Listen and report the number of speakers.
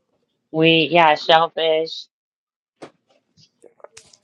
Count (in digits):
1